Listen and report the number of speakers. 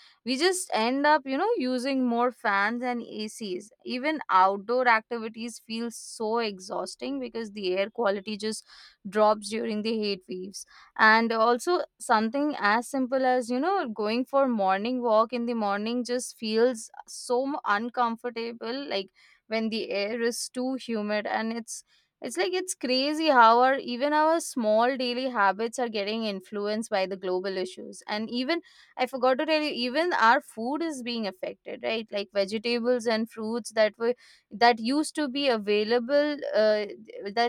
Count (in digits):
1